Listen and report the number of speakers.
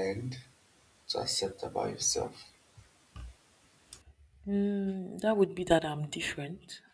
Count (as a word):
two